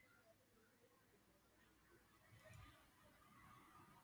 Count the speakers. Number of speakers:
0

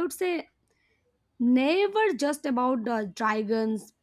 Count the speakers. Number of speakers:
1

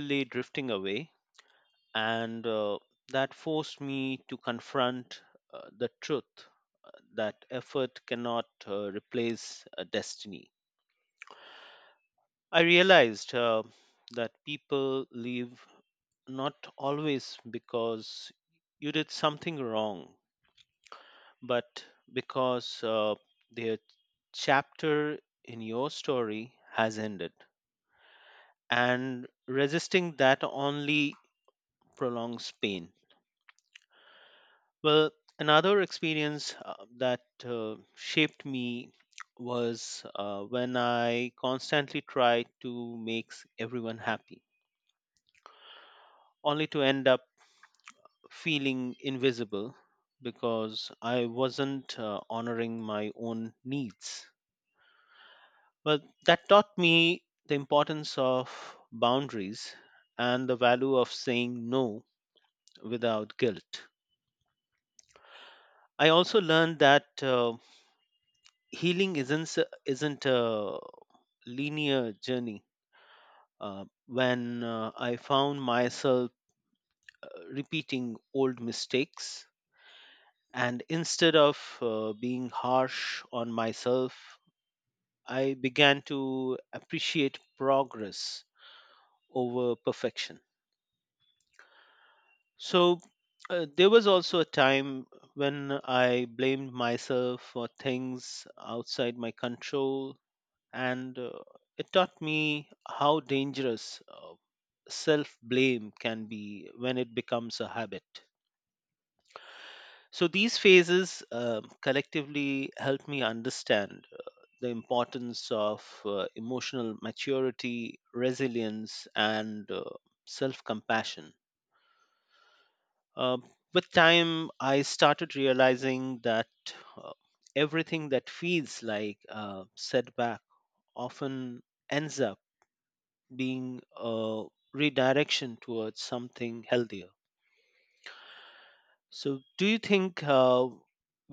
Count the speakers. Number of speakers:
1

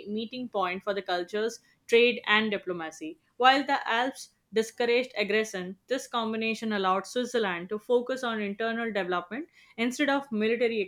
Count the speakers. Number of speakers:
1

